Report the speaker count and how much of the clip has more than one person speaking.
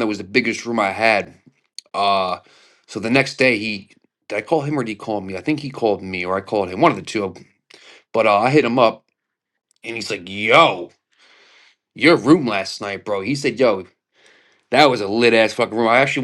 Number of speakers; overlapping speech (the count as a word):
one, no overlap